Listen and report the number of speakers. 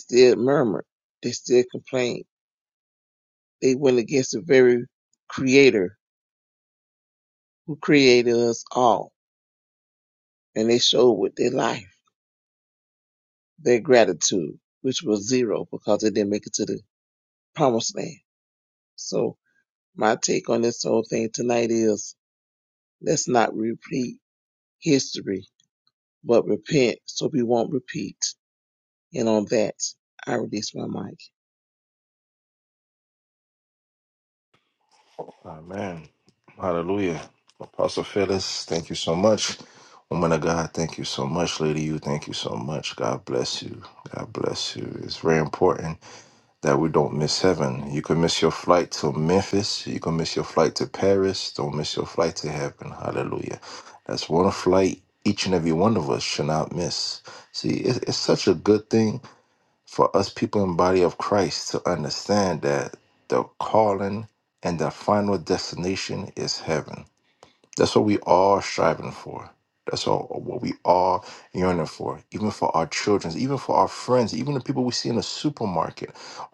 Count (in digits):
2